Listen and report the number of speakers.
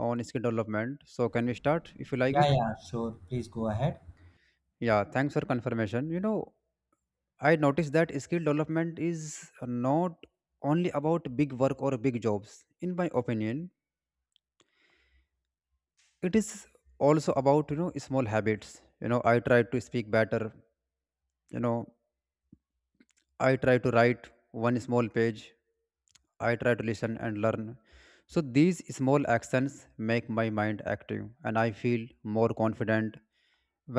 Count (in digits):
2